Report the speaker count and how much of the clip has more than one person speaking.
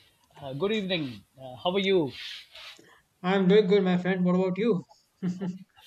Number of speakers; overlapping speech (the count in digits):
2, no overlap